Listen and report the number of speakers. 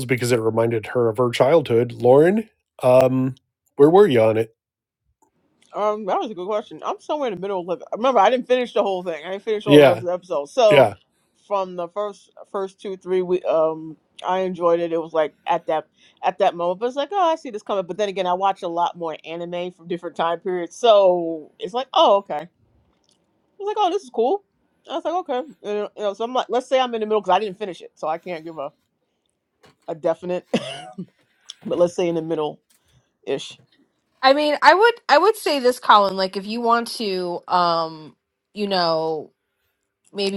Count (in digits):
3